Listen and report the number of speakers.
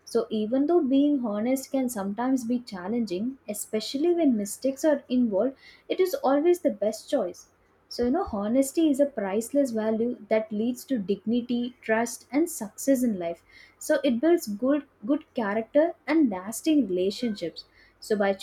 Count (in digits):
1